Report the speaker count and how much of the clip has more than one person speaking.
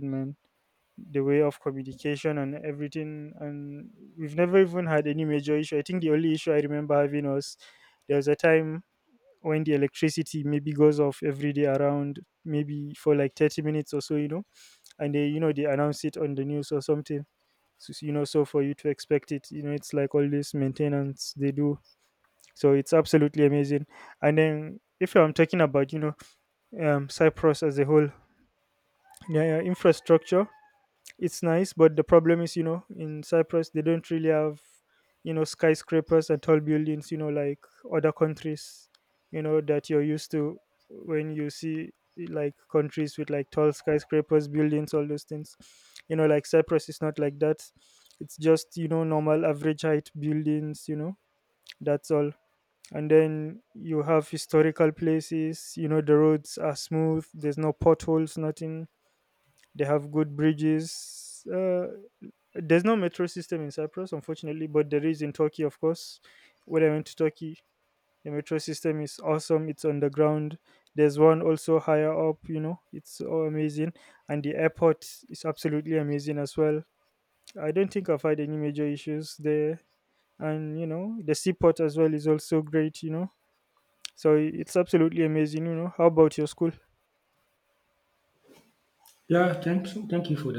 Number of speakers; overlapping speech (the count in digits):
2, no overlap